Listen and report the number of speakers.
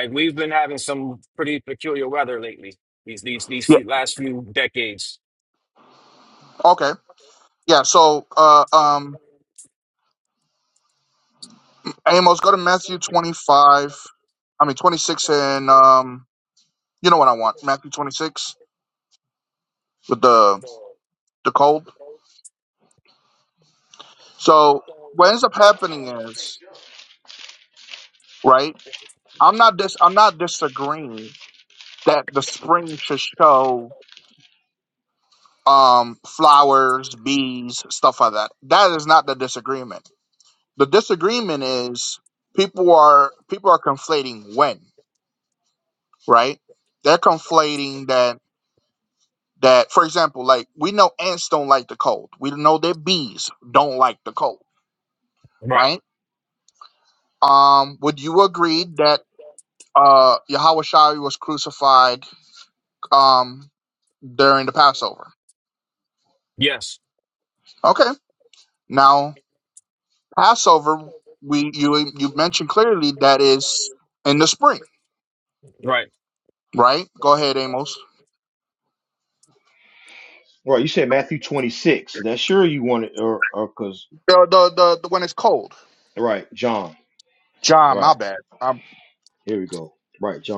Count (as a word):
three